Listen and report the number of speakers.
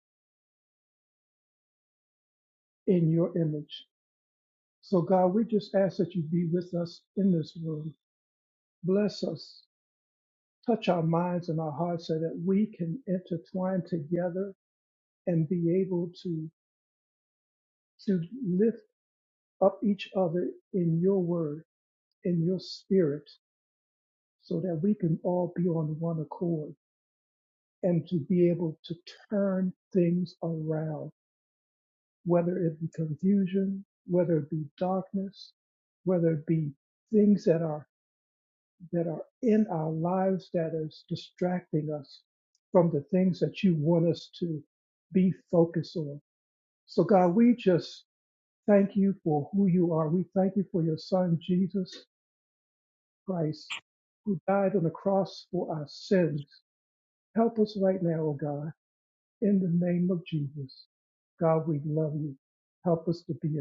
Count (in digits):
1